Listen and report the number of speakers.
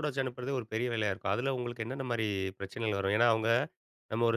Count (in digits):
1